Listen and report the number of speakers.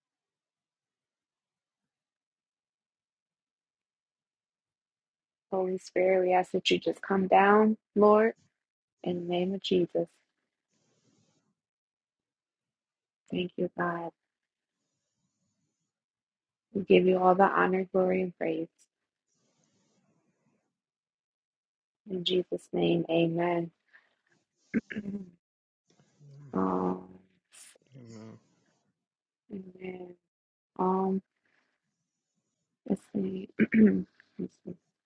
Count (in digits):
1